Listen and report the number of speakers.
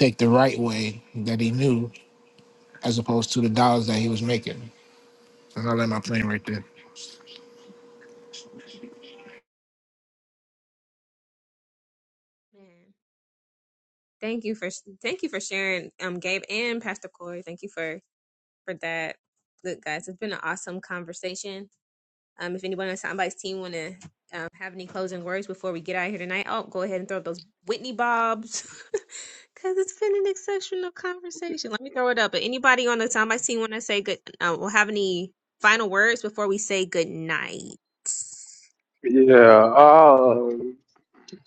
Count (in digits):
3